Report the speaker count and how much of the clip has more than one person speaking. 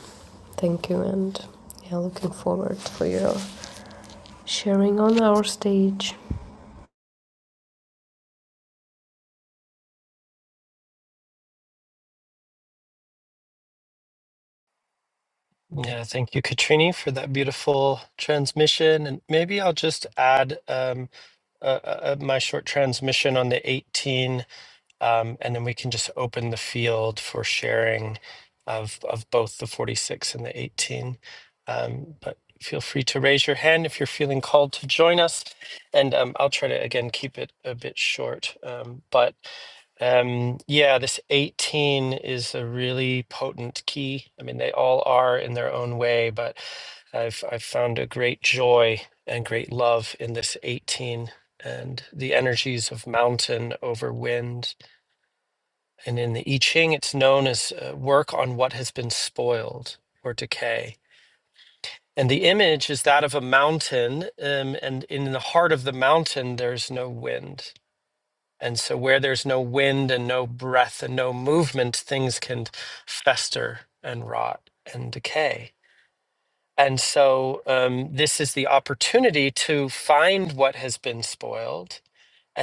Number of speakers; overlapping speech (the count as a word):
two, no overlap